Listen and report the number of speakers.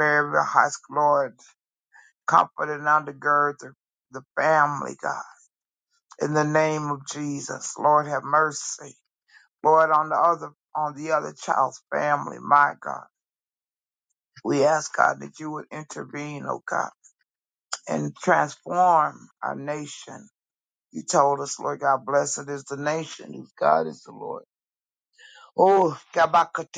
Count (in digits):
1